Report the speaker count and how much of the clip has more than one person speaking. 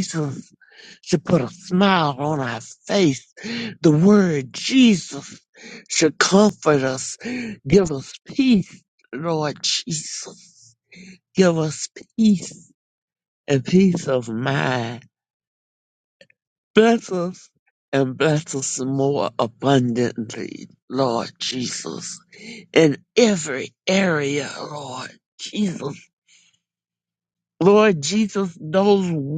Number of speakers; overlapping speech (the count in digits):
1, no overlap